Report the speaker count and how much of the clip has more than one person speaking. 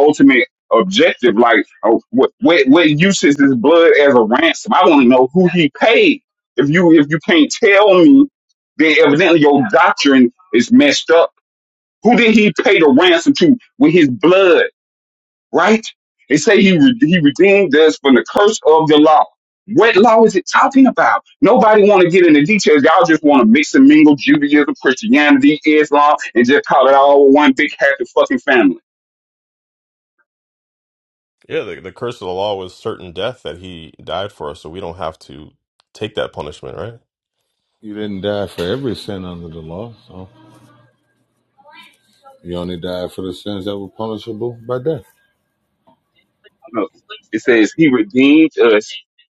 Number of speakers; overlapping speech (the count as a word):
three, no overlap